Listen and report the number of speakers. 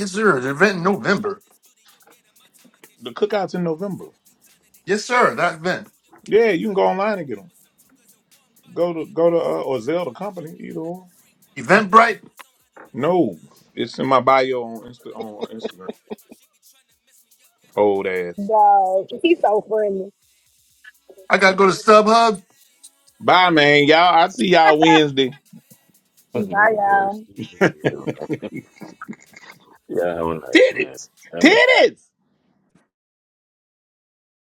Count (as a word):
four